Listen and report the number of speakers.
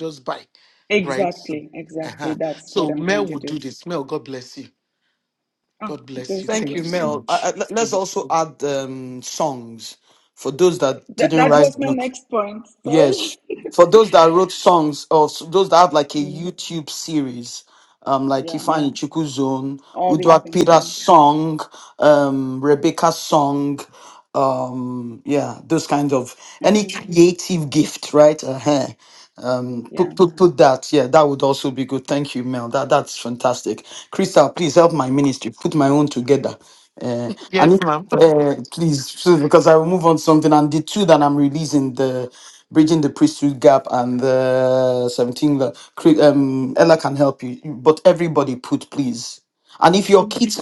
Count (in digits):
3